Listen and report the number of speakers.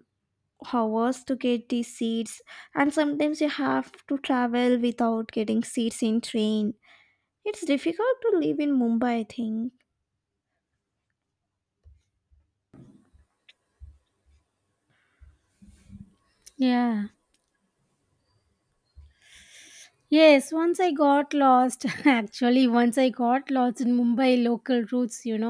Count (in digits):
2